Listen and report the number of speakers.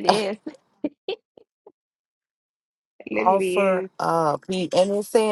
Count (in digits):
2